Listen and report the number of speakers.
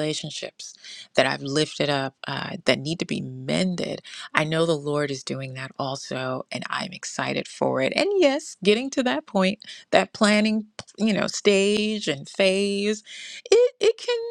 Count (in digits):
1